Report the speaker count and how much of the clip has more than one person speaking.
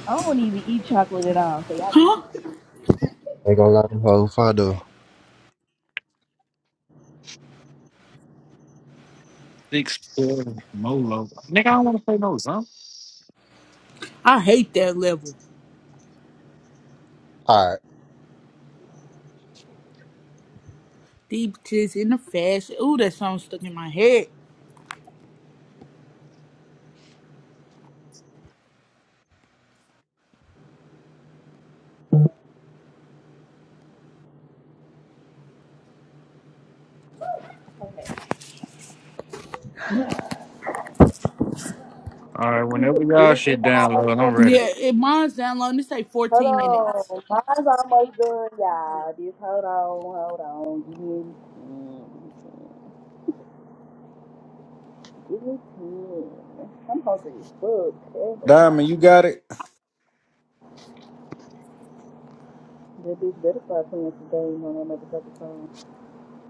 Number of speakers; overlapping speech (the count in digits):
4, about 5%